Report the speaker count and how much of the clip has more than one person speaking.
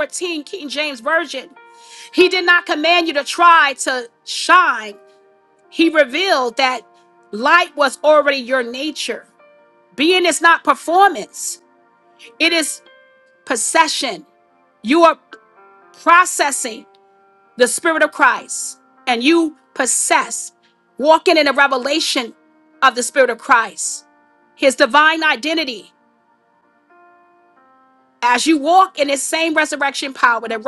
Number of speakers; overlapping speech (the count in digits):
1, no overlap